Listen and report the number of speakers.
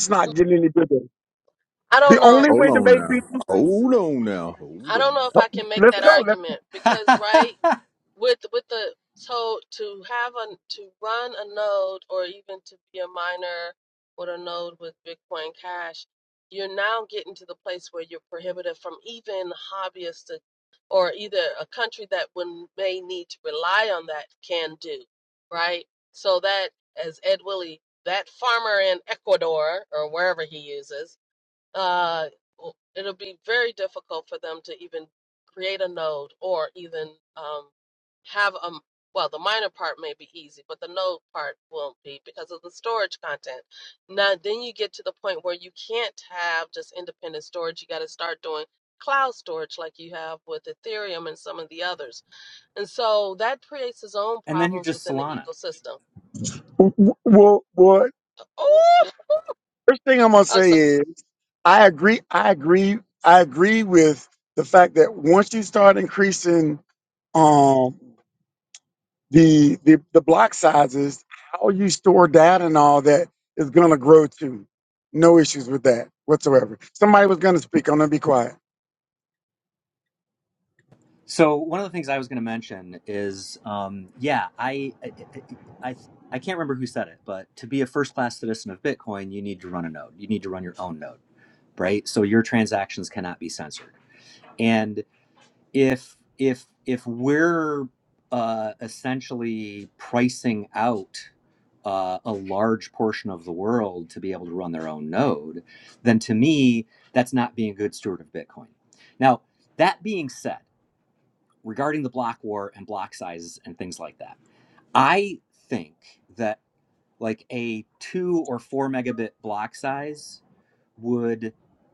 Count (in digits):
4